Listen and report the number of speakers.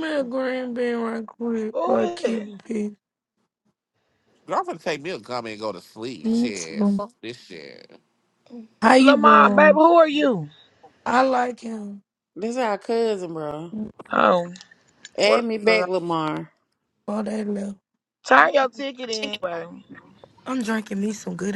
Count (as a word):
five